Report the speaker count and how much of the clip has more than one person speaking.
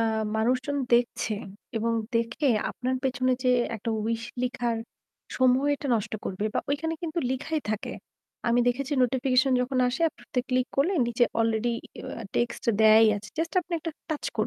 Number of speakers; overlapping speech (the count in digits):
1, no overlap